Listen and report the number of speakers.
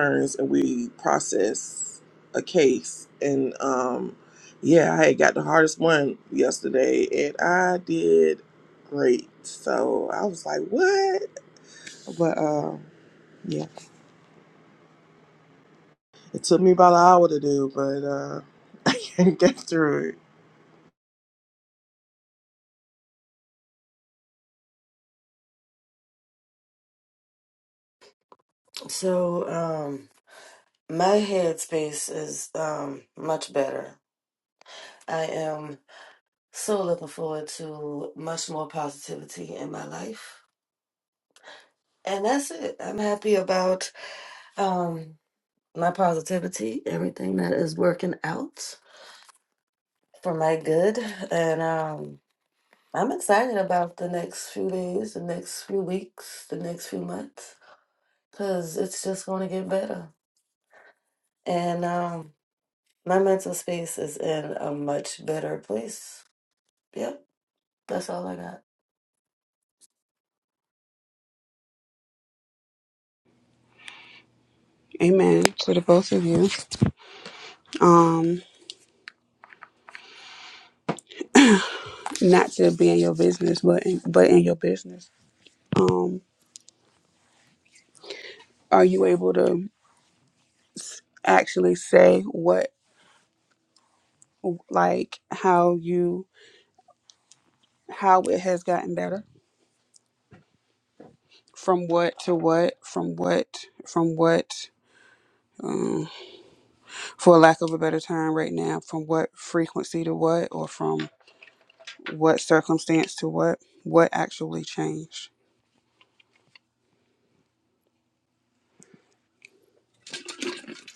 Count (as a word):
three